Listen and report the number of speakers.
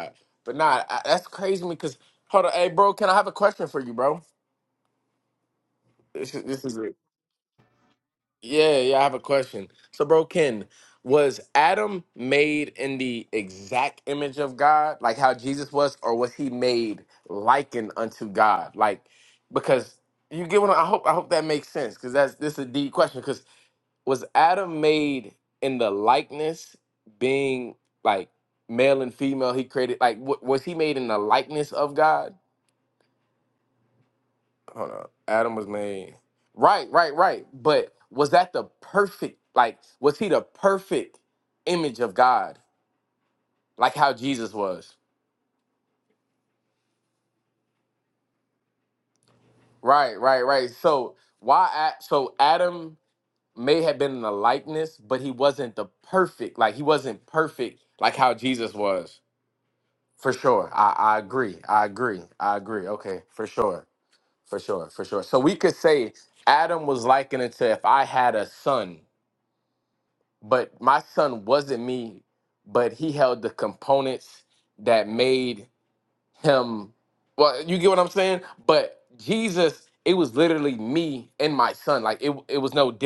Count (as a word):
one